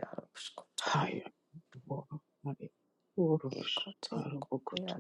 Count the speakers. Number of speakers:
2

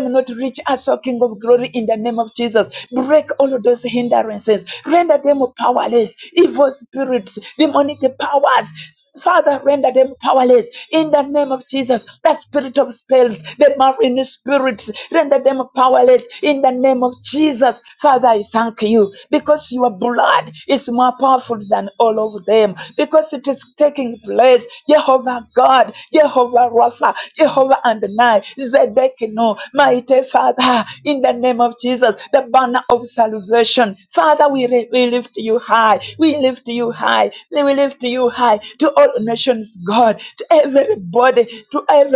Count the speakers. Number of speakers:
1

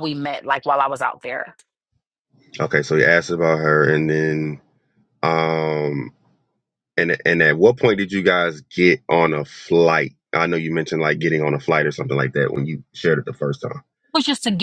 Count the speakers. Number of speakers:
2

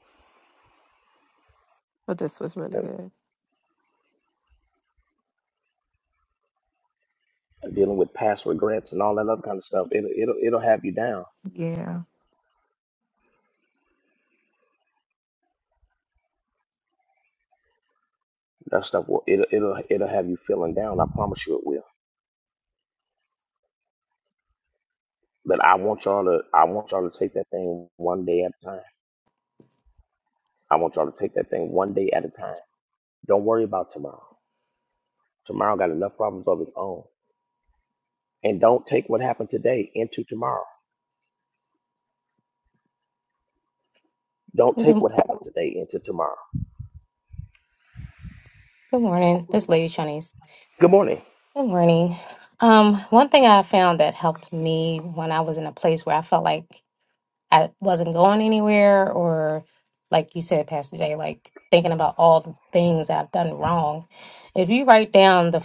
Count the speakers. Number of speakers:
3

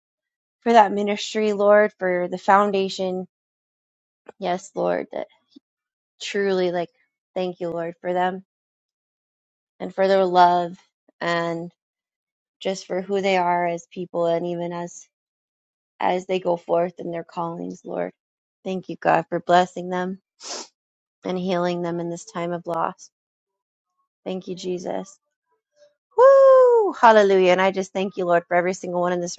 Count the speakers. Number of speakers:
1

